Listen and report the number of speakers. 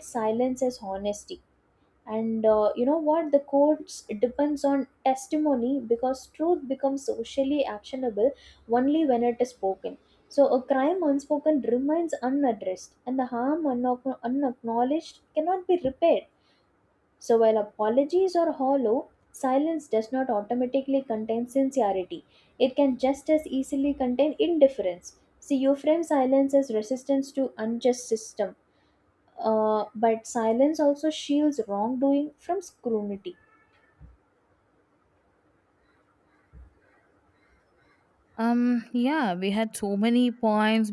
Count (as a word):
two